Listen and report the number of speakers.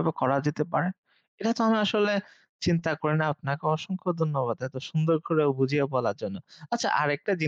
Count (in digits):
1